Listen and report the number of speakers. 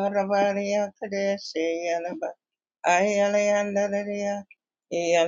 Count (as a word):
one